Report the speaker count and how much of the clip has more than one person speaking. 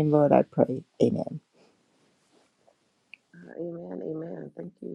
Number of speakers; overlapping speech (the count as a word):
two, no overlap